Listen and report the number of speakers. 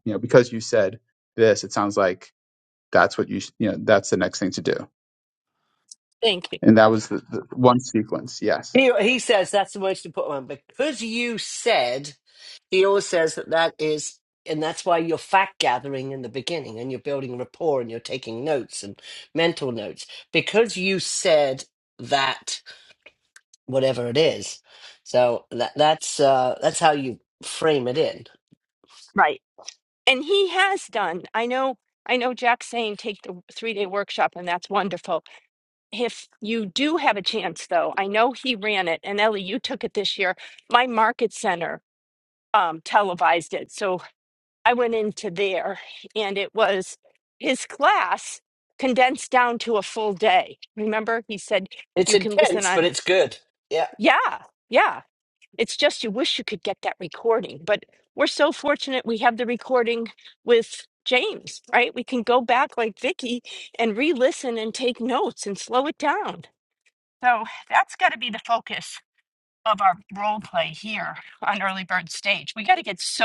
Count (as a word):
three